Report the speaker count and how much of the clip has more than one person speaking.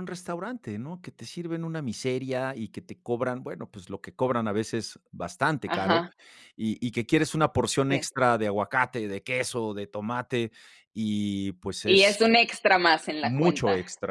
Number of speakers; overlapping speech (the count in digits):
2, about 10%